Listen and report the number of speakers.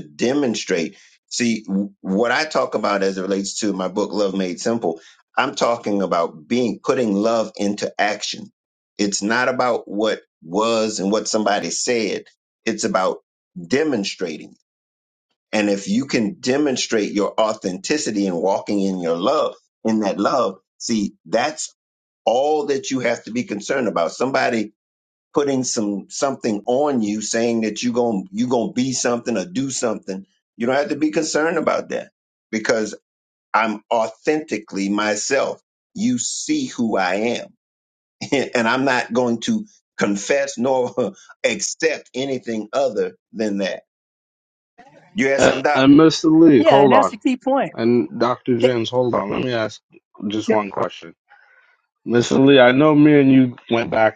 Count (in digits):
3